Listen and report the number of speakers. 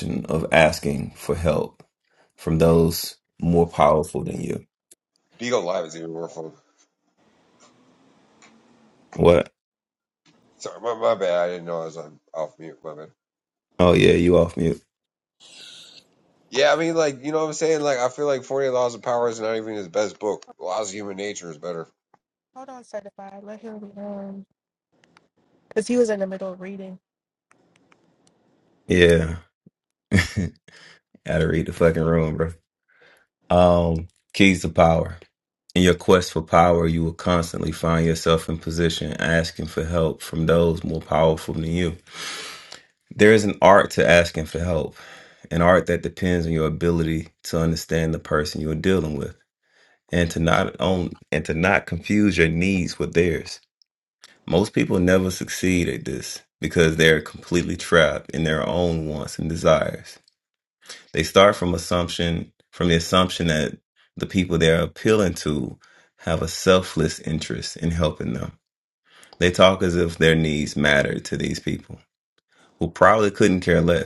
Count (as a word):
three